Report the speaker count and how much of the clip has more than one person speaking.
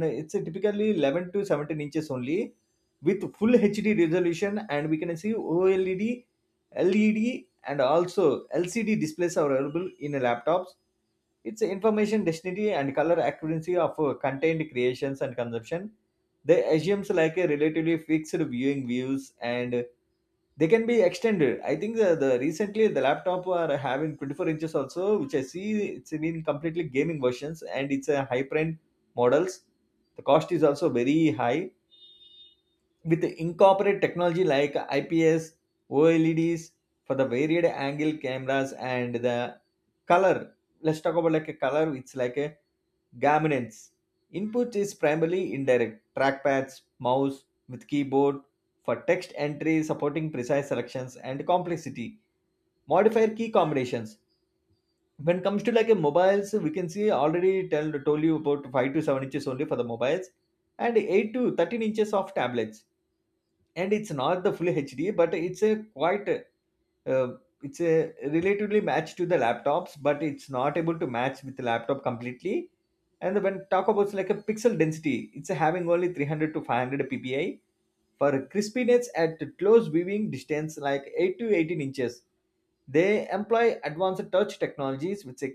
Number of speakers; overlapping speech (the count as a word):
one, no overlap